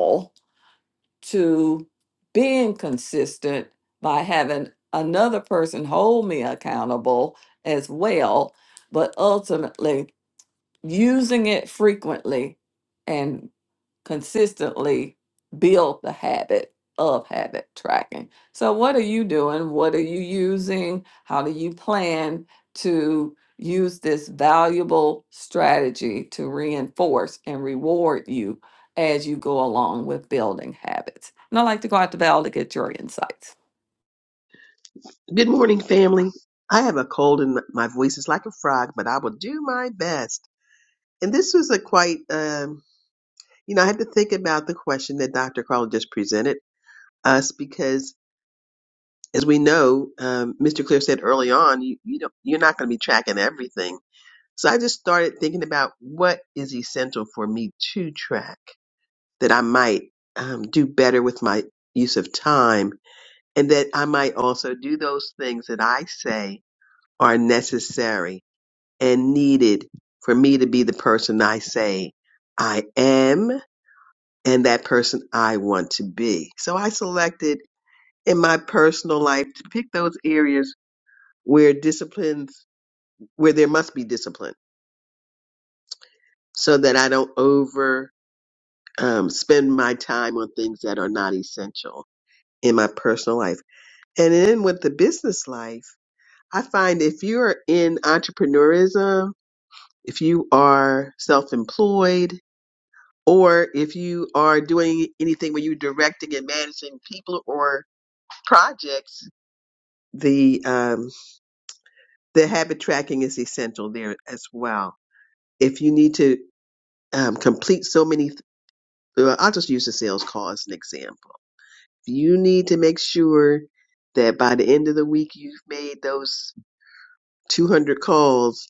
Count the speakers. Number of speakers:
two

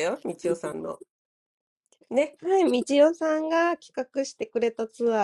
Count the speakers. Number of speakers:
two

